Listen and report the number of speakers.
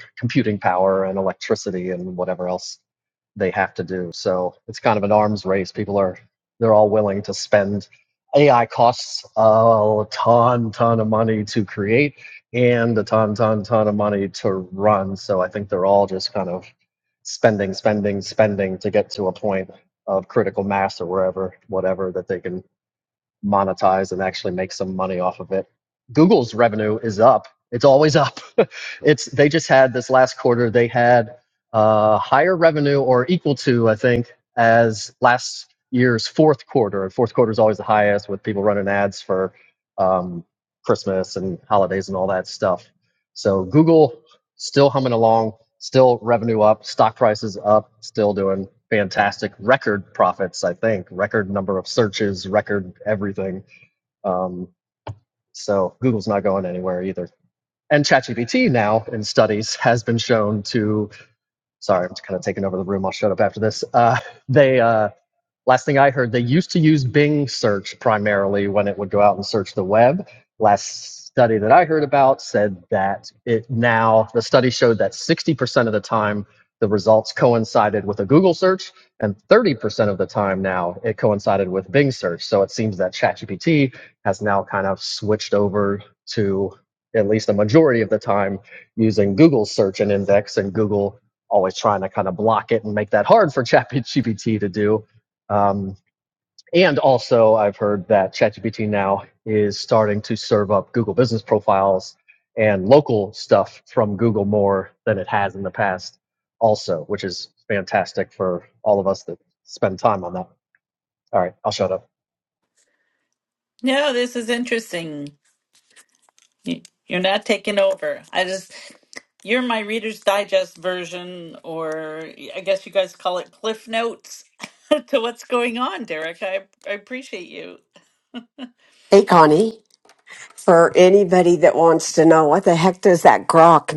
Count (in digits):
3